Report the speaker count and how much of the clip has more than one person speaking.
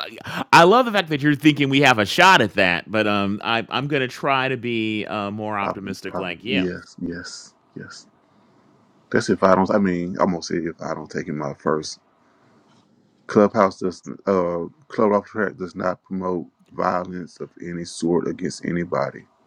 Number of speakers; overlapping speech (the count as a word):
two, about 4%